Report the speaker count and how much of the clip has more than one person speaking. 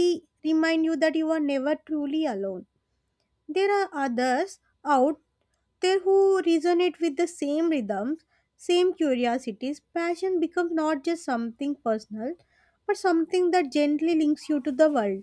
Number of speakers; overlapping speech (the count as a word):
one, no overlap